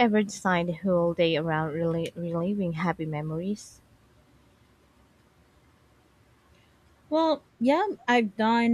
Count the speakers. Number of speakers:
2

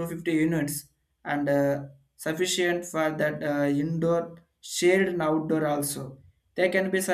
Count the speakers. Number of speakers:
1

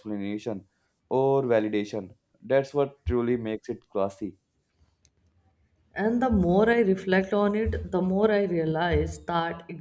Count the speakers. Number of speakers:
2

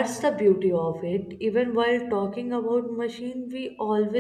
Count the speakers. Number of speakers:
1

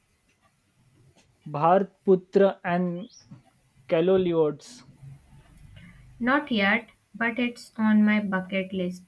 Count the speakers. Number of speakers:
2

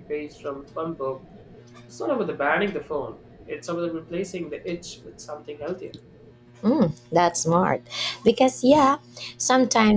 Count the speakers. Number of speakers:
2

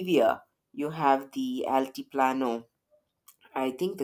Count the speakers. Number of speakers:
1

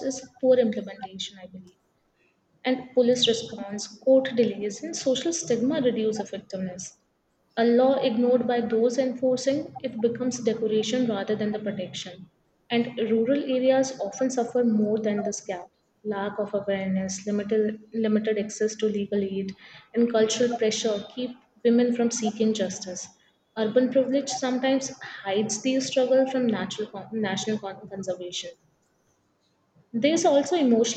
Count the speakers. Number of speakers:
1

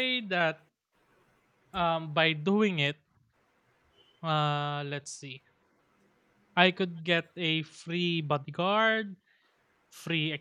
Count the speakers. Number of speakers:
1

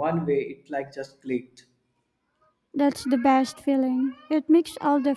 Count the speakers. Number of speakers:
2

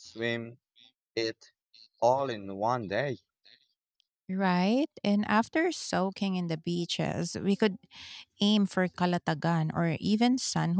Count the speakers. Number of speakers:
2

